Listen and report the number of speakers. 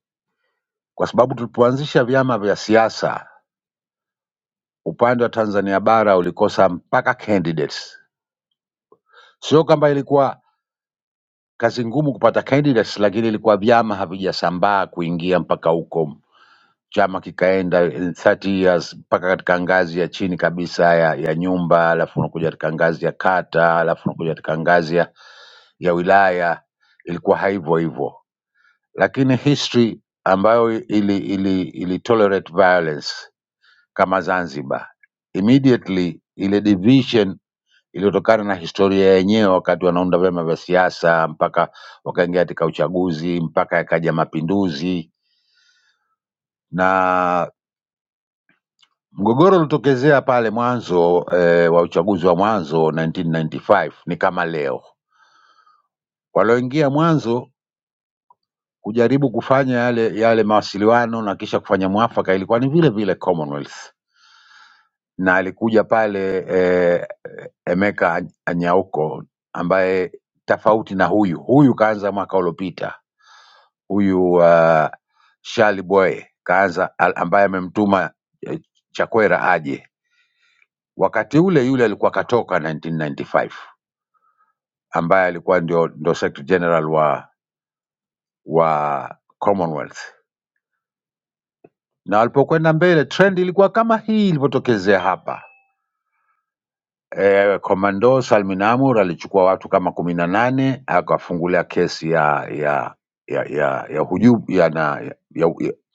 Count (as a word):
one